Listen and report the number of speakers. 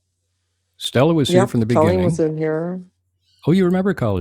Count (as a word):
two